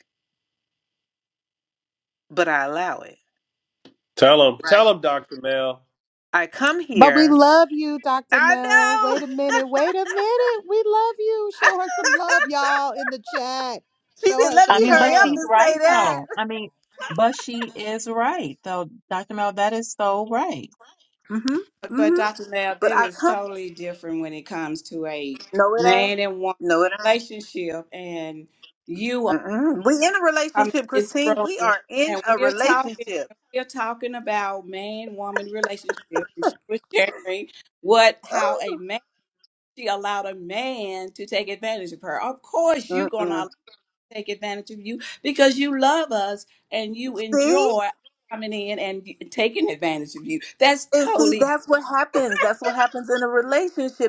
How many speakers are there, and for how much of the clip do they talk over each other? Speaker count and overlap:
5, about 17%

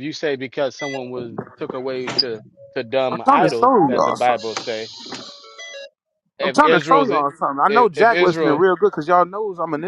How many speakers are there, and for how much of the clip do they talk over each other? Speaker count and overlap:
2, about 31%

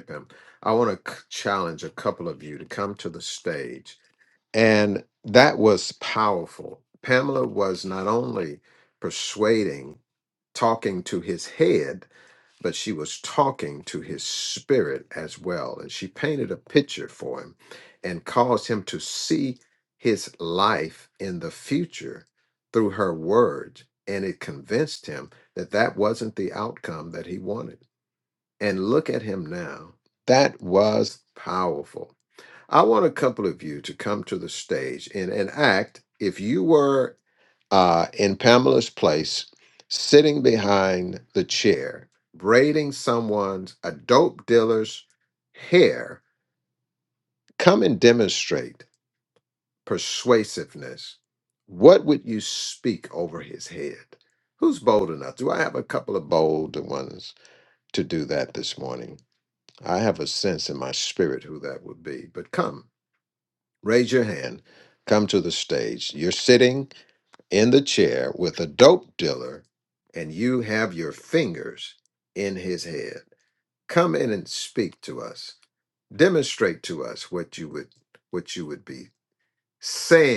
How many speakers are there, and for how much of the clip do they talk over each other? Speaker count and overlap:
1, no overlap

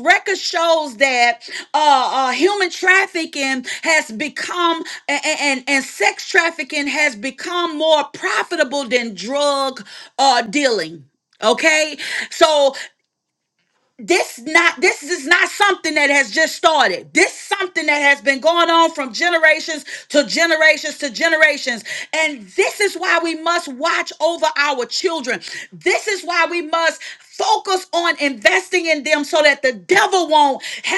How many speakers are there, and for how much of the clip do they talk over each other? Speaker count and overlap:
1, no overlap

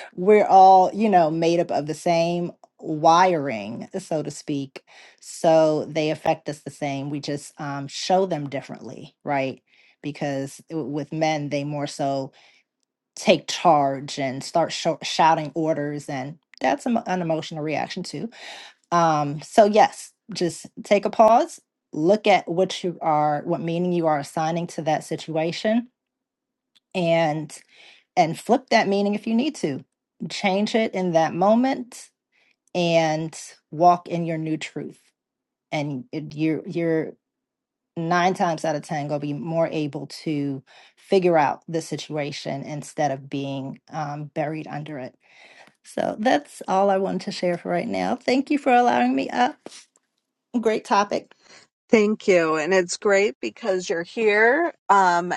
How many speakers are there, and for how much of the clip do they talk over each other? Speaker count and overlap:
2, no overlap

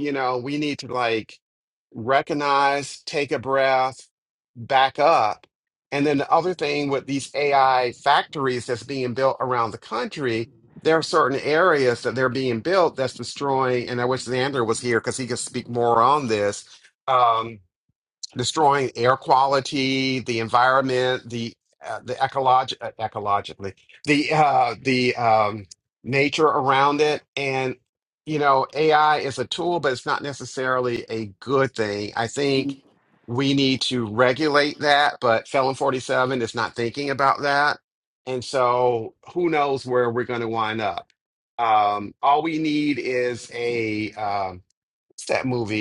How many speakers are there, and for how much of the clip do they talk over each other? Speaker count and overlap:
1, no overlap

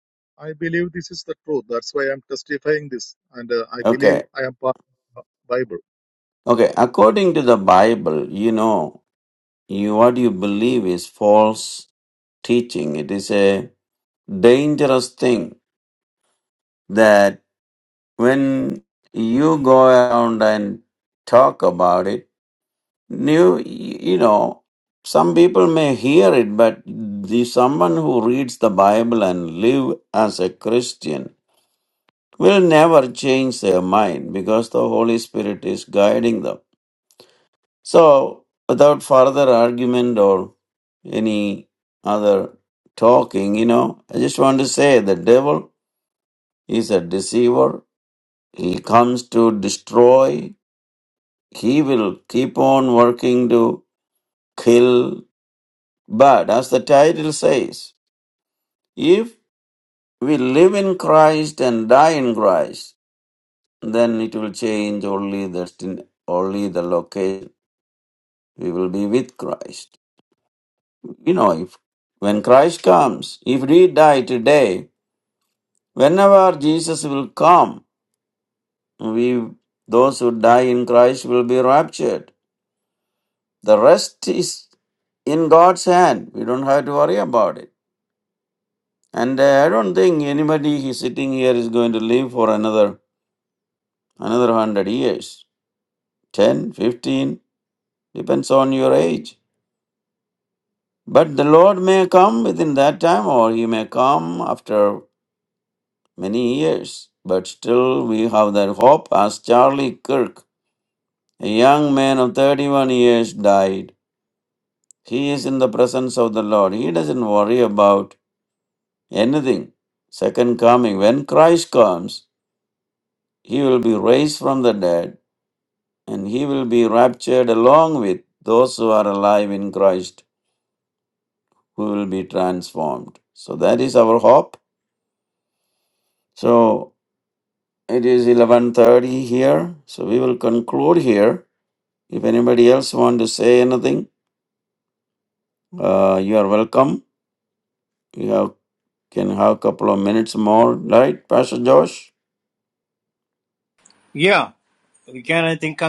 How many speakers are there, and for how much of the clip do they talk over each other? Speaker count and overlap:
3, under 1%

